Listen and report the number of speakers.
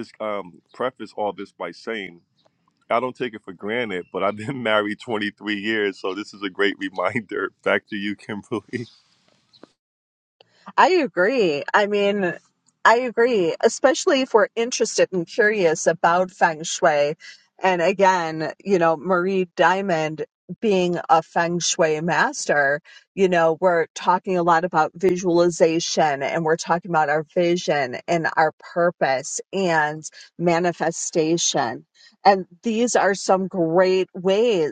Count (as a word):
two